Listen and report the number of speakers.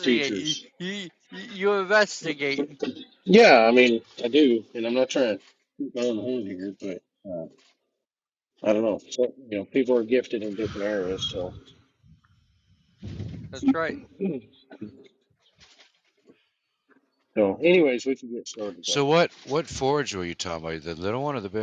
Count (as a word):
three